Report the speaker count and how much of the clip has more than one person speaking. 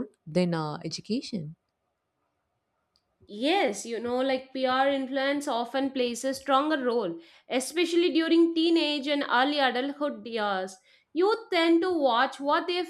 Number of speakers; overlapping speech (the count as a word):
two, no overlap